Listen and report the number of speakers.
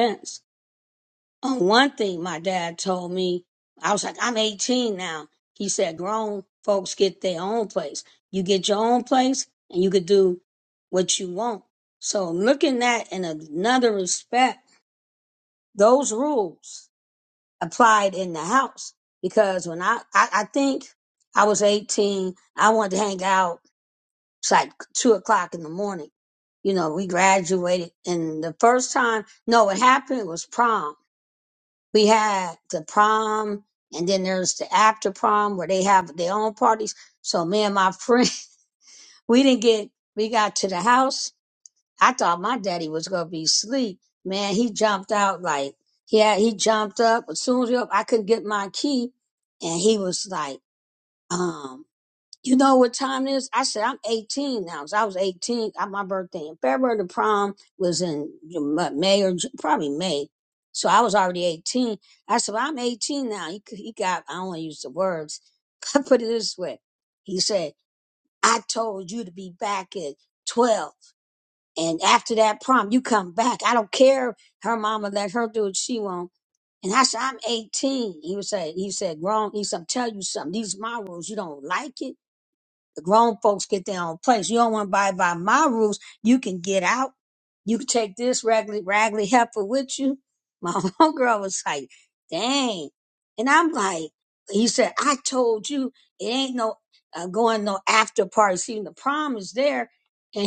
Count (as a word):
one